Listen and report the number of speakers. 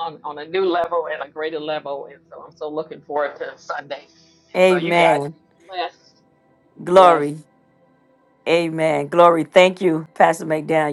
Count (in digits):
2